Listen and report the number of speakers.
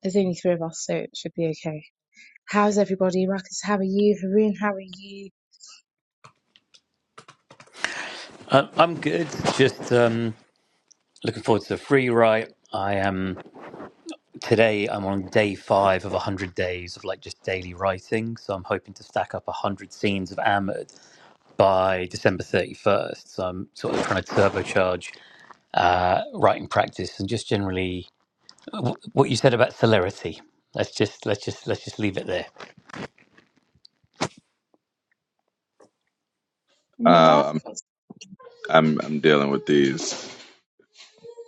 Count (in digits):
3